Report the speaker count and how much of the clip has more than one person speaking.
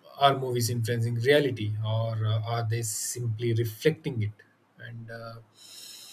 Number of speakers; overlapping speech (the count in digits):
1, no overlap